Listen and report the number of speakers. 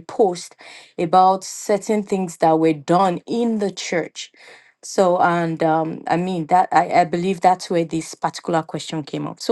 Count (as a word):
one